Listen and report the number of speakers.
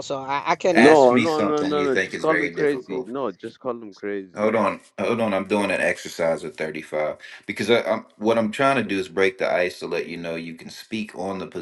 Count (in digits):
3